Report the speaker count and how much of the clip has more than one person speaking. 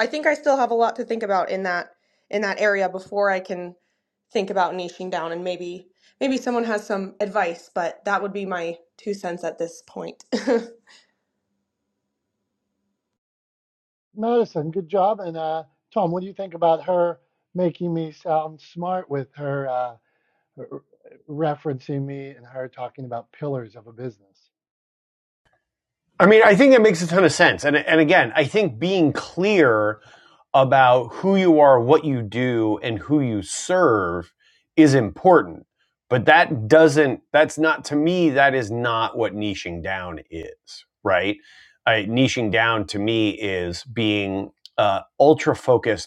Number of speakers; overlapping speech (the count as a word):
three, no overlap